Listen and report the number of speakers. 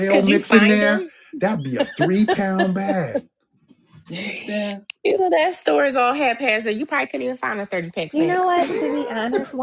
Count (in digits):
3